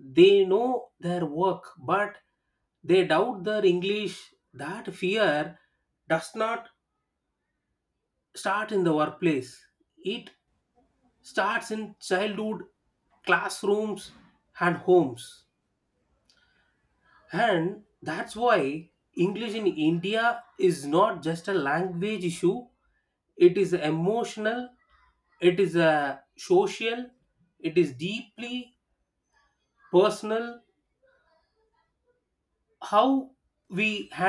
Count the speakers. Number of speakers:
one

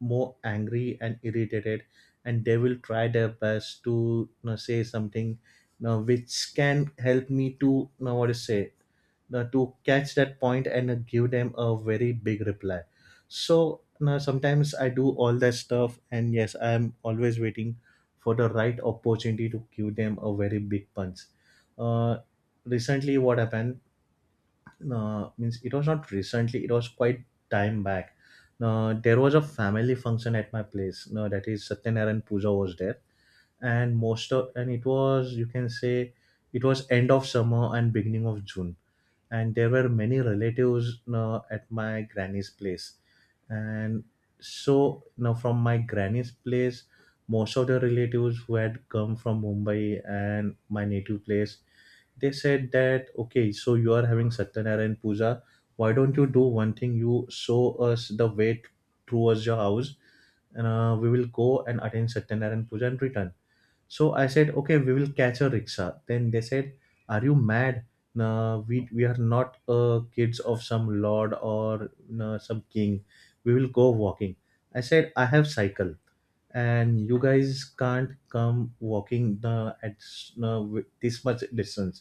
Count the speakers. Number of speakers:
one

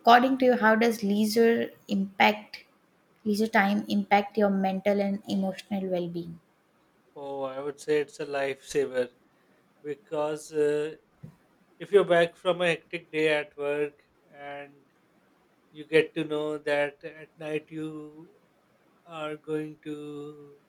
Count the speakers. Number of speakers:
two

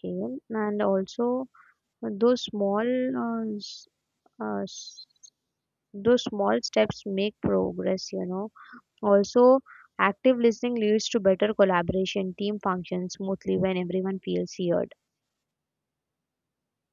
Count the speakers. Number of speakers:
one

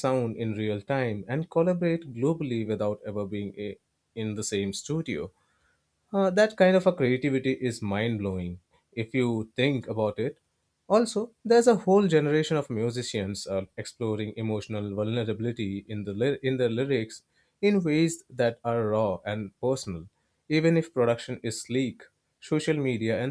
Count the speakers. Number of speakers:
one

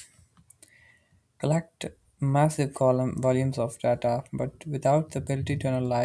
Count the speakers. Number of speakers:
one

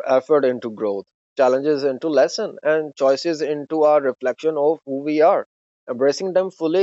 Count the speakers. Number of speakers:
one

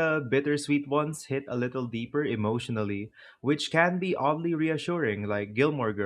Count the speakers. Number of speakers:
one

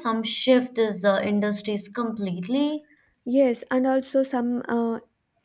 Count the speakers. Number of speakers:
two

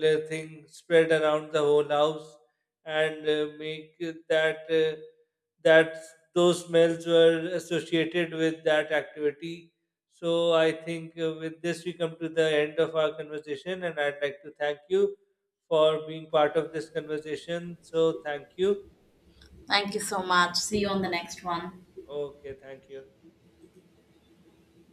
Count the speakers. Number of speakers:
two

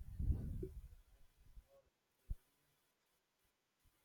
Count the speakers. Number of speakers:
zero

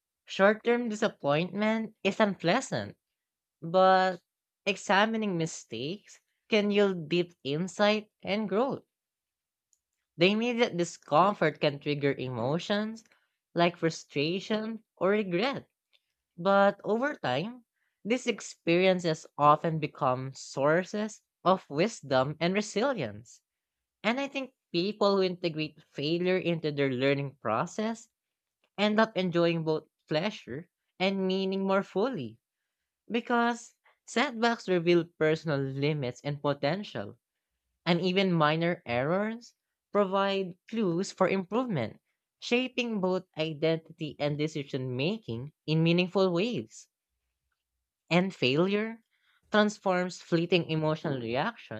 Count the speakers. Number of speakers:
one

